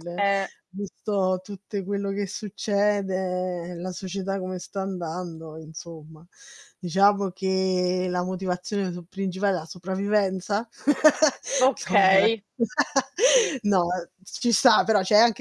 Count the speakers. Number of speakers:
two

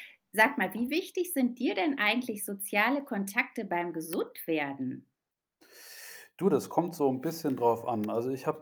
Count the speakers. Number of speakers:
two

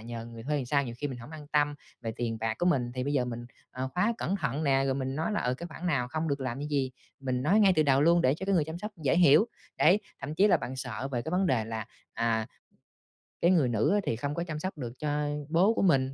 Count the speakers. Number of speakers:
one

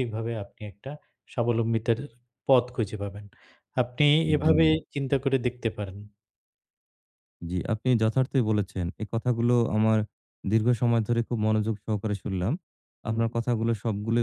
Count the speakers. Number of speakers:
two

